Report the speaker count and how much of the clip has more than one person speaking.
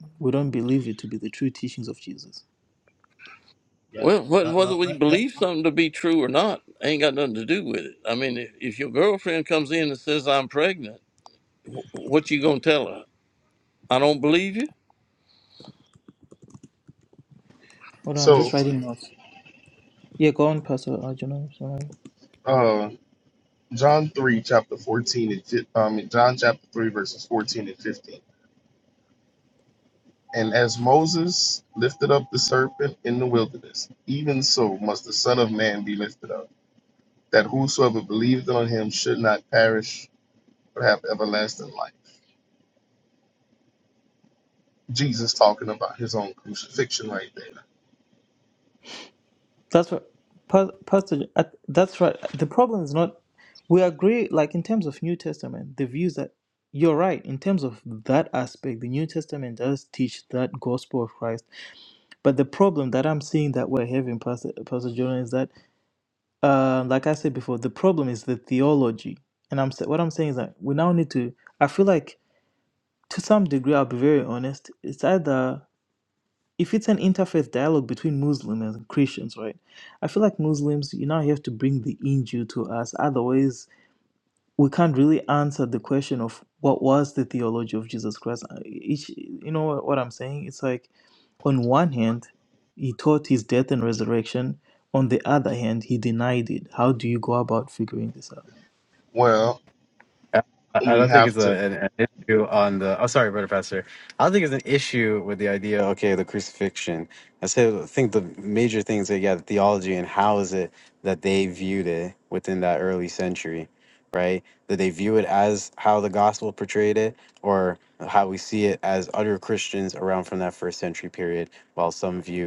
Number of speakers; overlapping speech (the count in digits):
4, about 2%